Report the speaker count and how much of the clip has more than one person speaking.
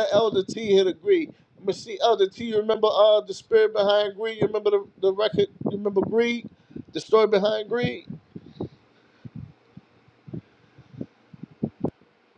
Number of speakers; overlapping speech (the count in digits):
1, no overlap